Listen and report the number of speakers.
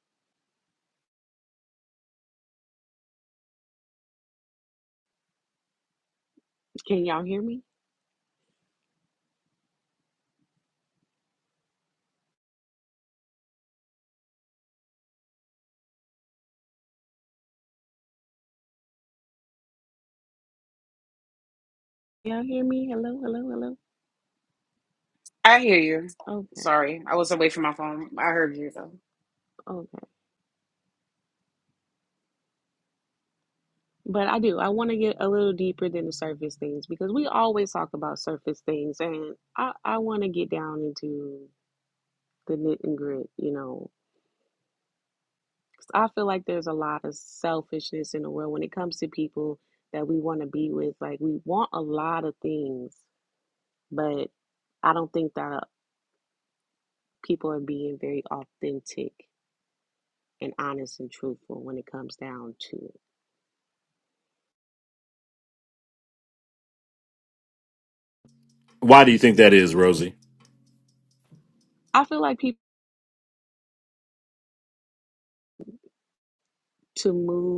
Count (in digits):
3